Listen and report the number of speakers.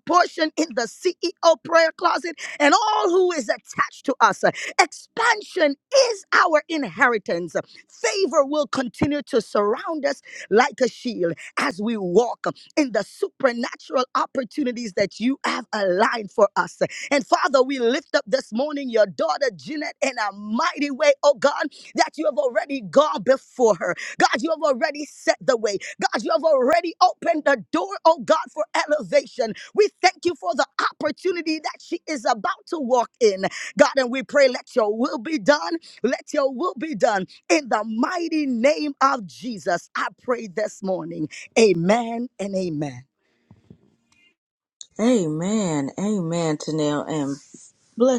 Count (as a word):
two